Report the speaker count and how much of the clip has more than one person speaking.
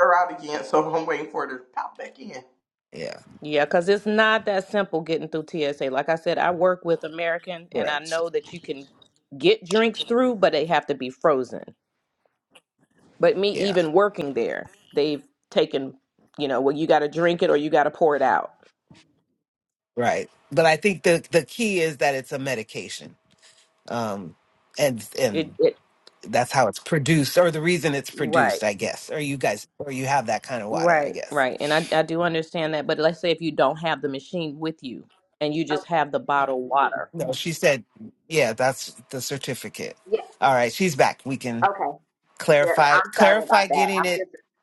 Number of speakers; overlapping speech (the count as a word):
four, about 7%